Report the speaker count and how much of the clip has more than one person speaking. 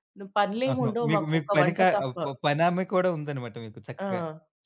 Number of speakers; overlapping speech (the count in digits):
2, about 30%